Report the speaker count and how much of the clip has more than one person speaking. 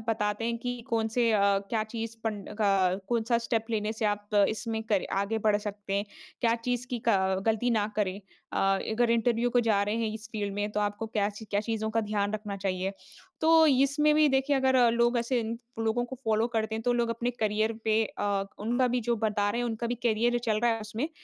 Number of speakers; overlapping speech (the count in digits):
1, no overlap